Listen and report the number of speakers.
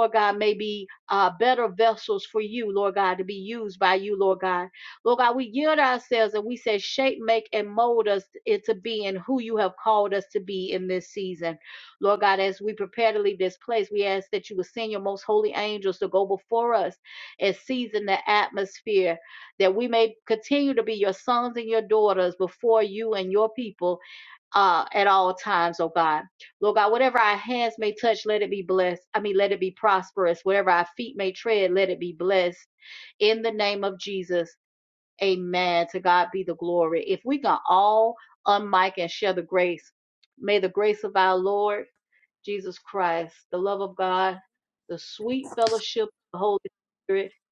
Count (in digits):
1